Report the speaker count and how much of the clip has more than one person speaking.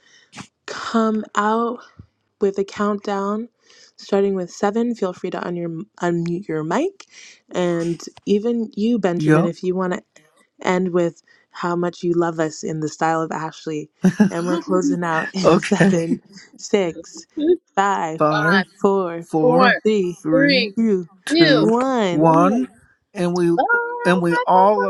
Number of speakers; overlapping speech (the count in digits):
3, about 15%